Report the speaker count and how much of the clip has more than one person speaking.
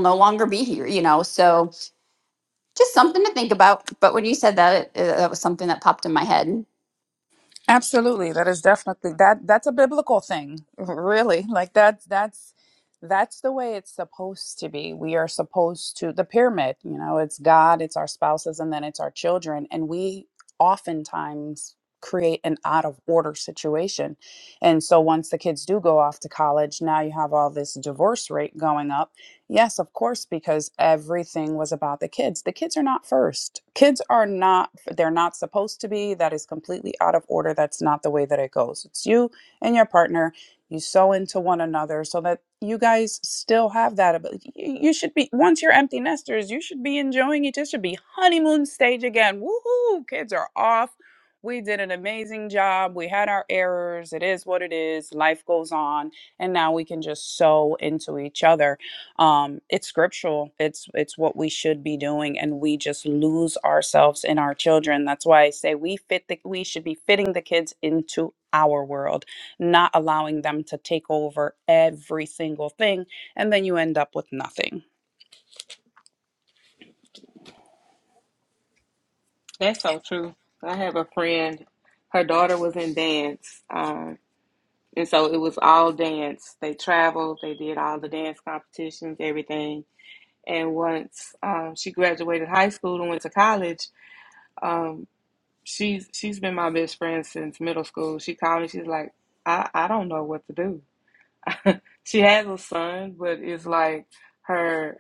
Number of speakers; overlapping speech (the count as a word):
three, no overlap